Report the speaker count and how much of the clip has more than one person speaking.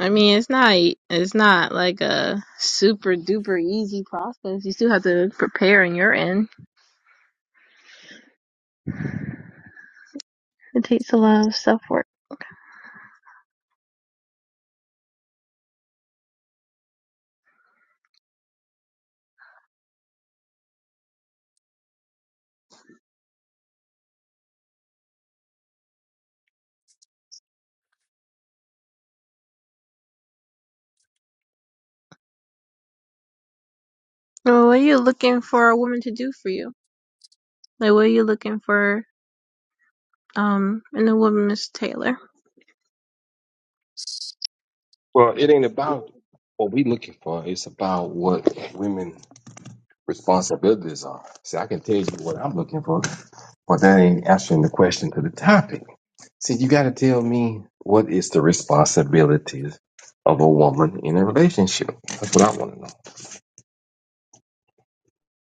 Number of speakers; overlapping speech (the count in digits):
2, no overlap